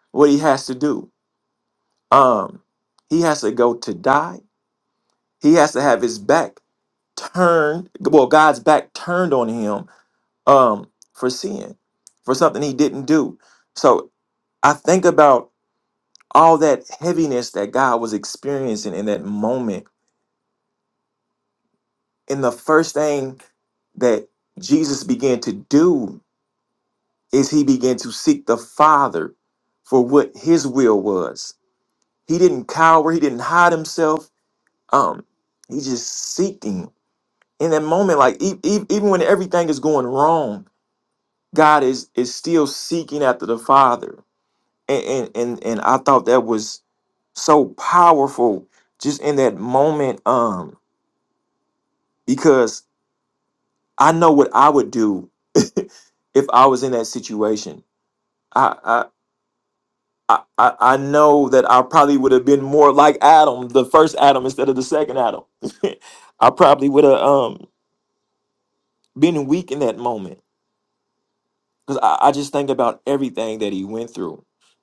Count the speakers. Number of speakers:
1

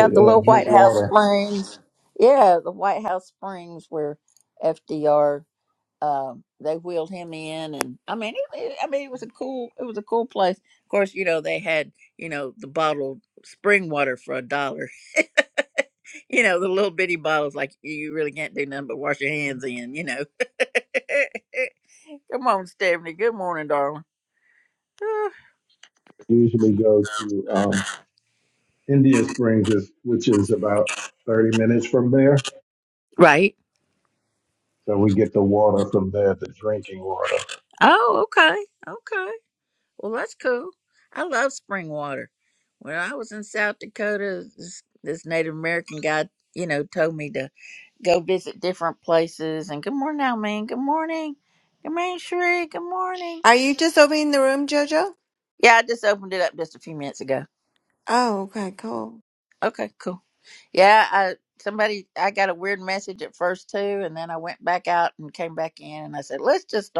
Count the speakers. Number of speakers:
3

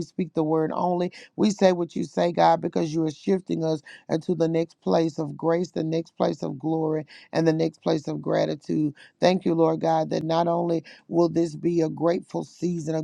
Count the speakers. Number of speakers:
1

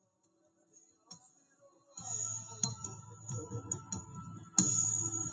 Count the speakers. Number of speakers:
0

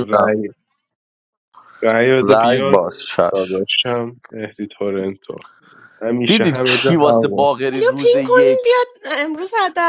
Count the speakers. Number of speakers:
3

